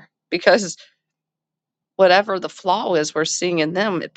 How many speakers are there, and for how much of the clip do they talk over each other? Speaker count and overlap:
1, no overlap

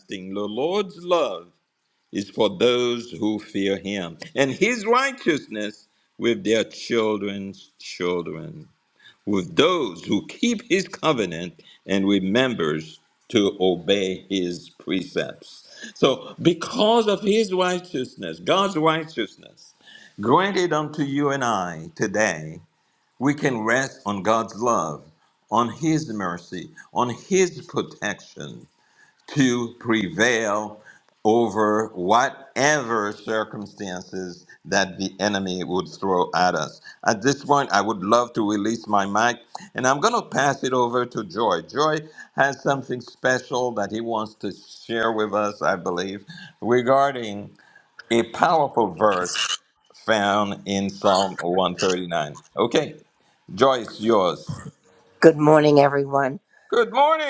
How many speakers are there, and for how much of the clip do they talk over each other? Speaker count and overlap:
2, no overlap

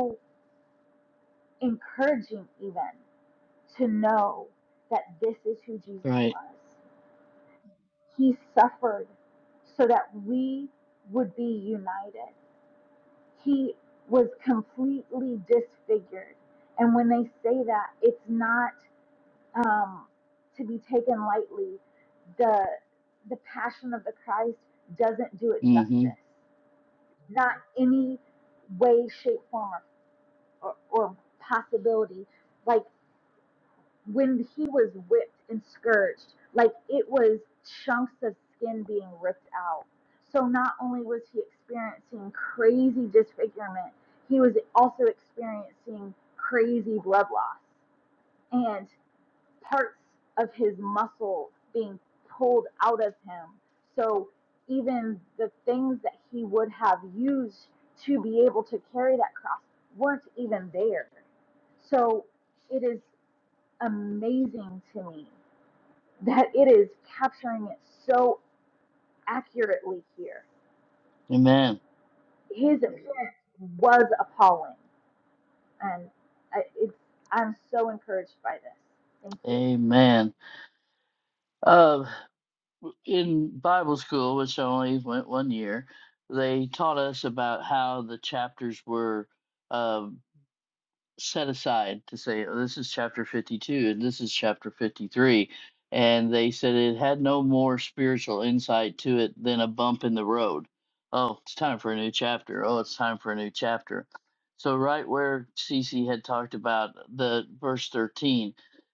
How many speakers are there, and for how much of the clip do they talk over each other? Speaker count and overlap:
2, about 1%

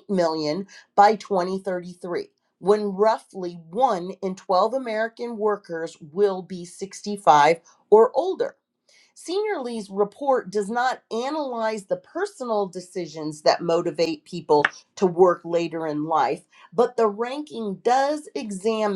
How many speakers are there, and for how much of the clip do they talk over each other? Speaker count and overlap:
1, no overlap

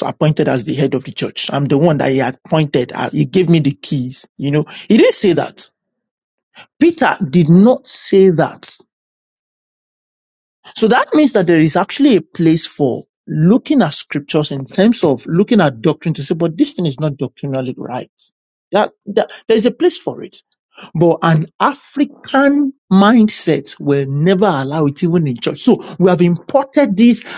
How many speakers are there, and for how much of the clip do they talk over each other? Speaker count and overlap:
1, no overlap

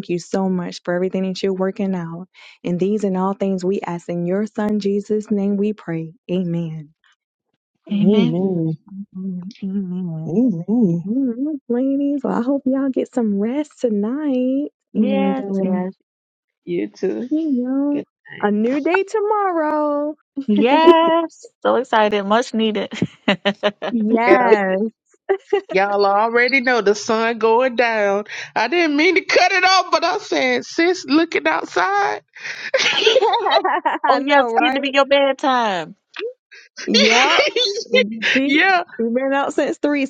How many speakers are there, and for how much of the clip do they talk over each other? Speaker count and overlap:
4, about 7%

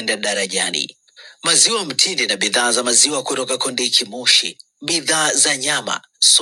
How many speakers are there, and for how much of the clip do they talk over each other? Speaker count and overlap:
1, no overlap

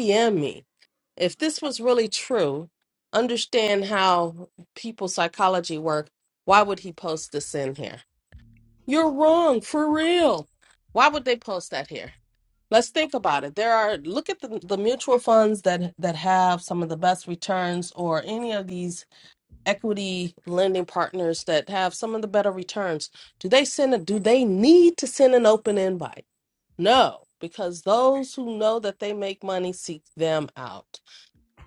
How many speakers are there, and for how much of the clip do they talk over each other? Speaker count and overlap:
1, no overlap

